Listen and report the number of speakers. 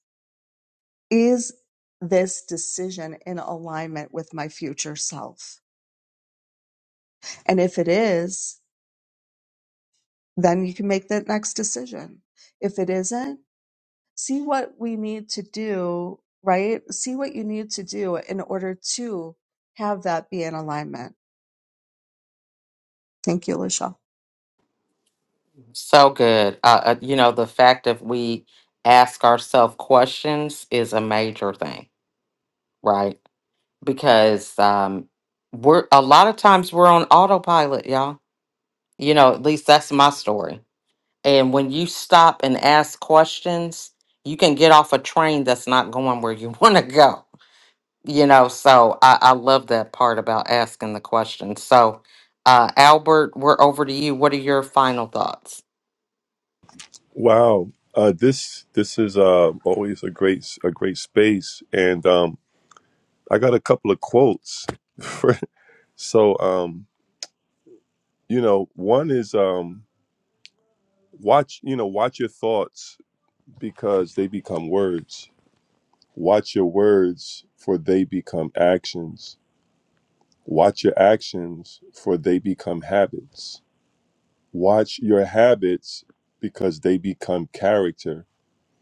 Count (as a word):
three